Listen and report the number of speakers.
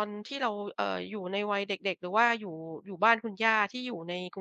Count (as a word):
one